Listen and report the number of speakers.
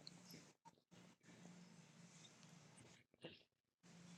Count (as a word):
zero